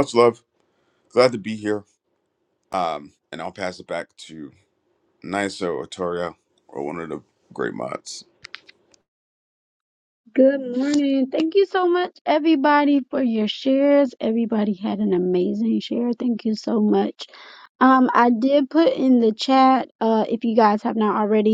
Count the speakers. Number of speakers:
two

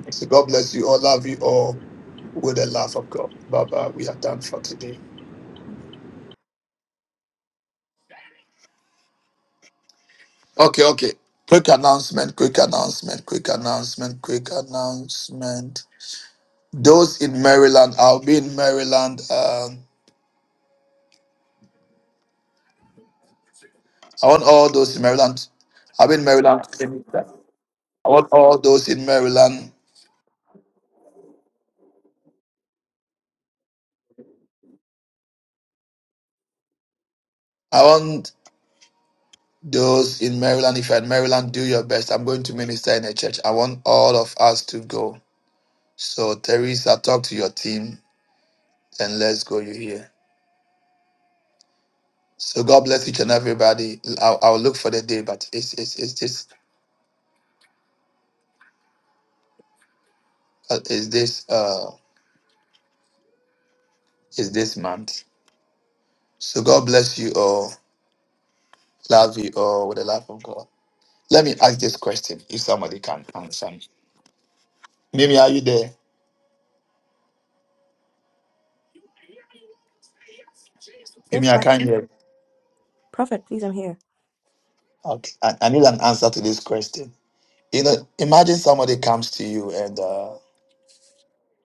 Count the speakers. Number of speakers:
two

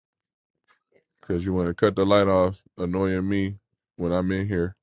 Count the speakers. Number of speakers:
one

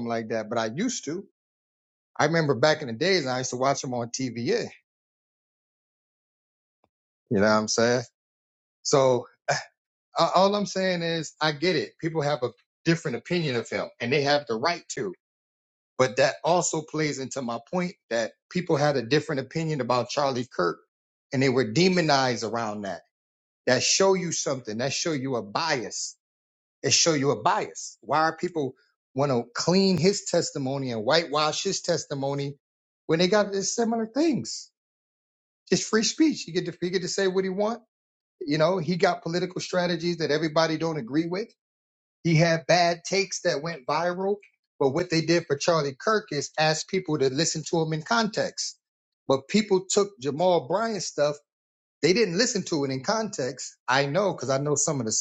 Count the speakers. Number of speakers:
one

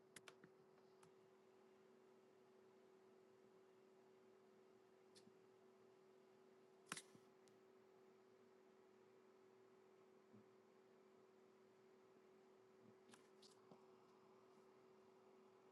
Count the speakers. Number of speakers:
zero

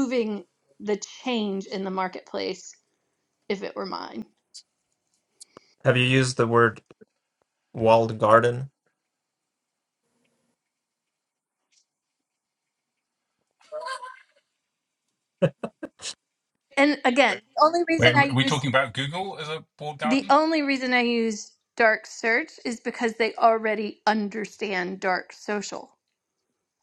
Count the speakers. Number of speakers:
three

